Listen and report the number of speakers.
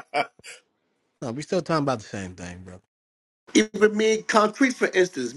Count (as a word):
two